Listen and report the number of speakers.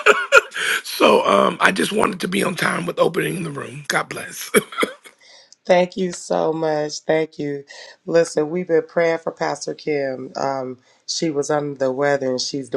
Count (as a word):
two